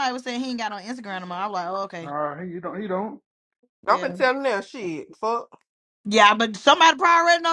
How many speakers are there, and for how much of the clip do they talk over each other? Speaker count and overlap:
3, about 4%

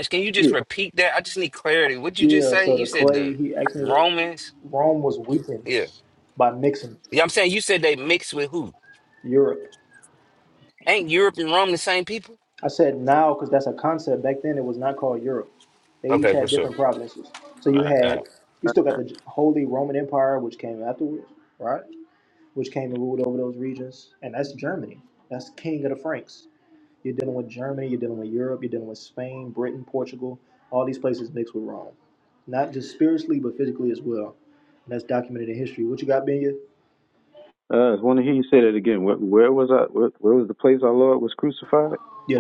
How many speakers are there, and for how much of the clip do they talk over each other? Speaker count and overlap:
3, about 6%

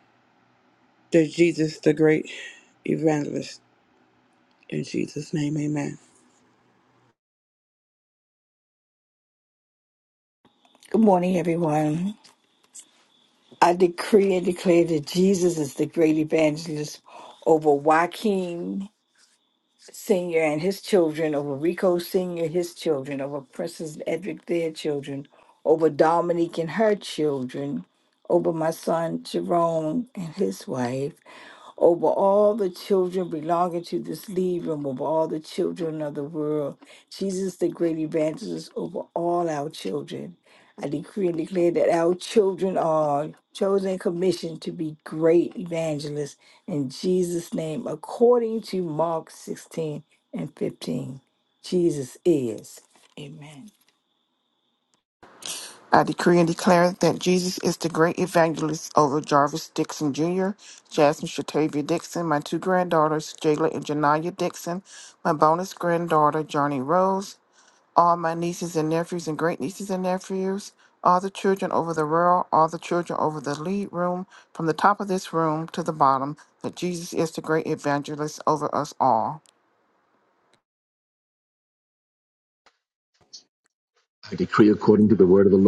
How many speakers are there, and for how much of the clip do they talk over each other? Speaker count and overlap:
4, no overlap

